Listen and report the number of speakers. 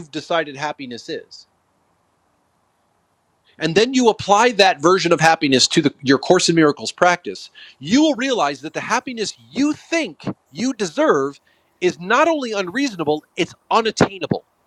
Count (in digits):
1